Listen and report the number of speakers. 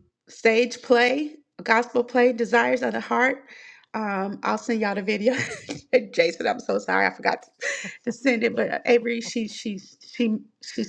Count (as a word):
one